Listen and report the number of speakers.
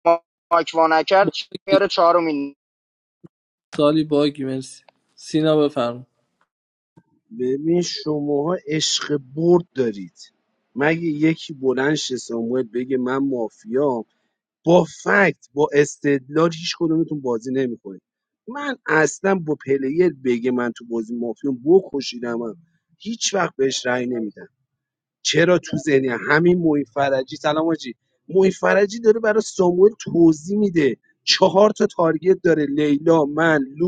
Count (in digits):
3